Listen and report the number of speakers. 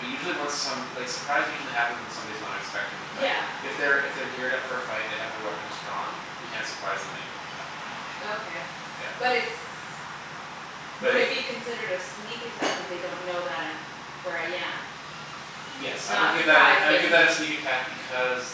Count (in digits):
2